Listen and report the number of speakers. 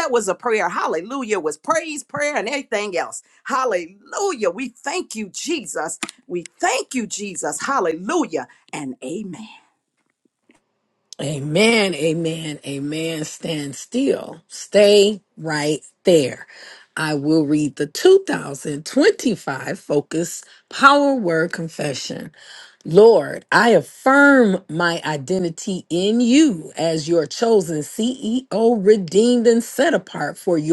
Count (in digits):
2